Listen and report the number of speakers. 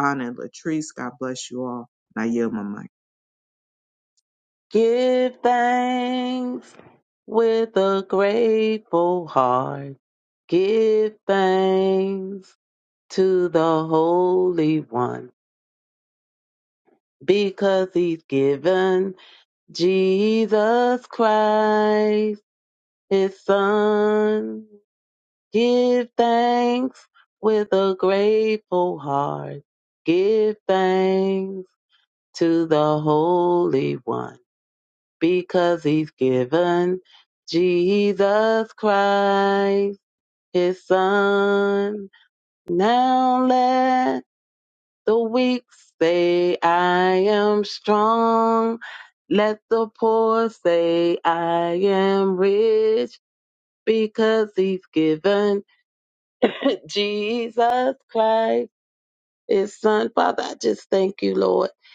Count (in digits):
2